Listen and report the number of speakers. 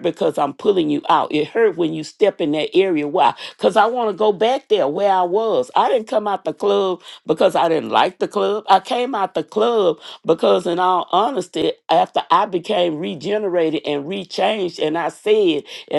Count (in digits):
1